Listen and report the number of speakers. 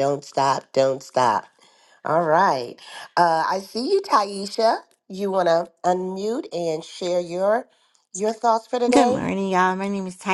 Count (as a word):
two